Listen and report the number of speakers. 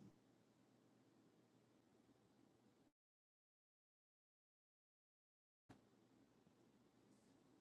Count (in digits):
0